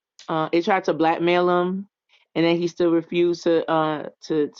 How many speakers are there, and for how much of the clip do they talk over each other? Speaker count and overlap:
1, no overlap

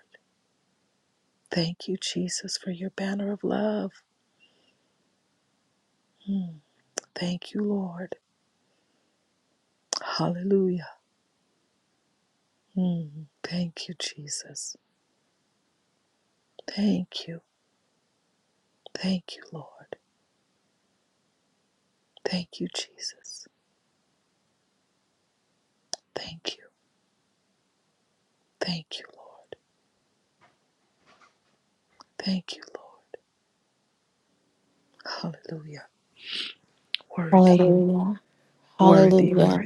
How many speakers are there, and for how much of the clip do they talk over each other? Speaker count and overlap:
2, about 3%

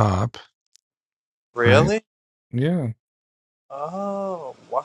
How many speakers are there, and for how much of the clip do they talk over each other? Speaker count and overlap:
2, about 7%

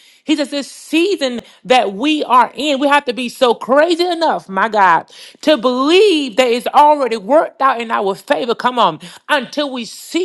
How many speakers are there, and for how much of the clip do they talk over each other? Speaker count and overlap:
1, no overlap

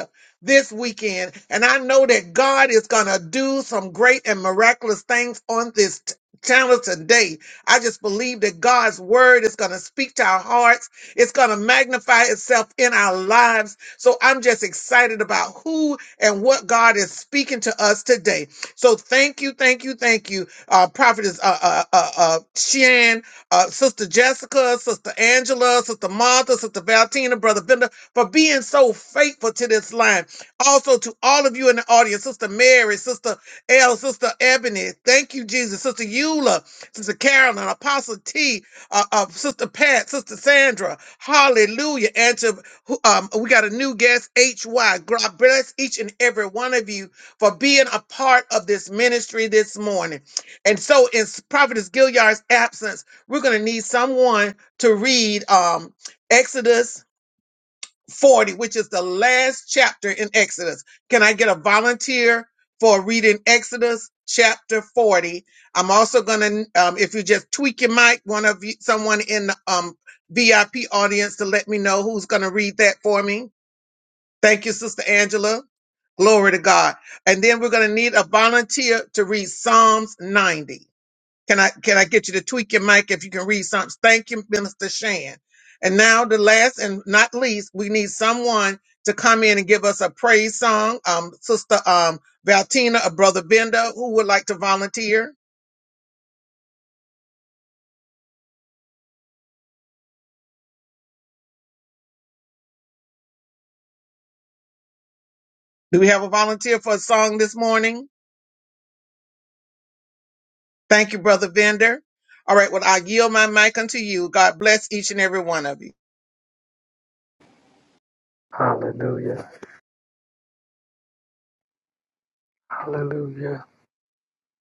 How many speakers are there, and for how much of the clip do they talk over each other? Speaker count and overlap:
2, no overlap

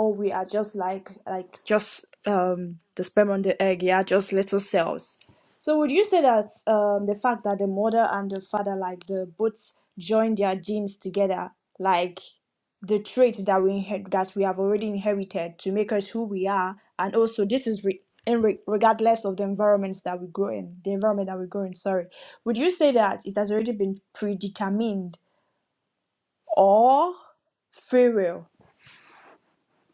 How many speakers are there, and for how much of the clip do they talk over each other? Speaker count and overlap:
1, no overlap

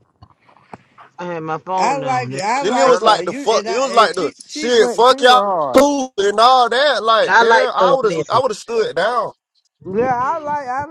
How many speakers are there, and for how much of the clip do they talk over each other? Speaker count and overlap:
3, about 48%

